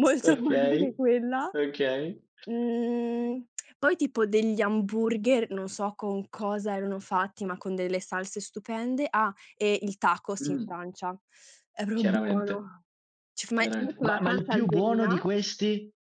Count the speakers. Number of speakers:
2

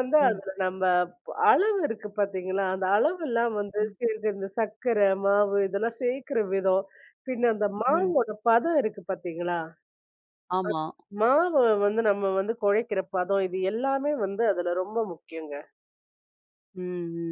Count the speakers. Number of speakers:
2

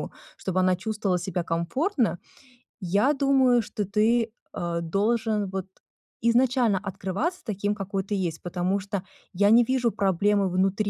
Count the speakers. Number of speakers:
1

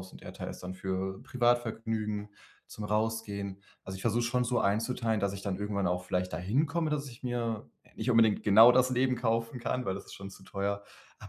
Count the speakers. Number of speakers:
1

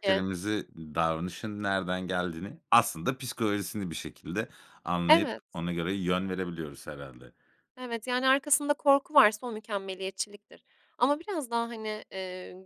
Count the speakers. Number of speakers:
2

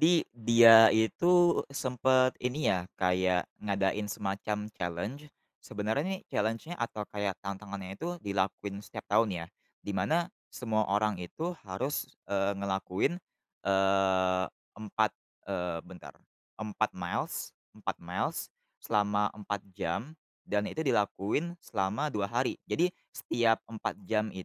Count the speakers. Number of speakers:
1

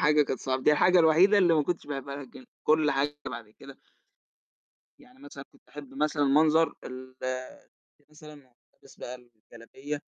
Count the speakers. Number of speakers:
1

